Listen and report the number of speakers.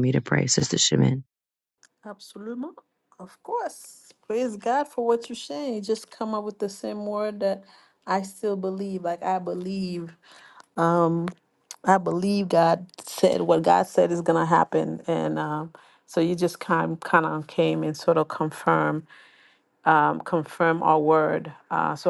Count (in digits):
2